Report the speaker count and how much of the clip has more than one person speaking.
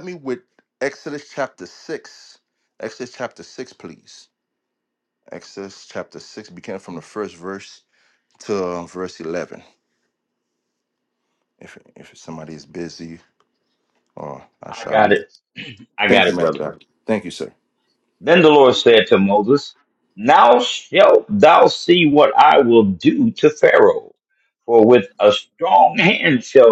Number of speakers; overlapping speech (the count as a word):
two, about 4%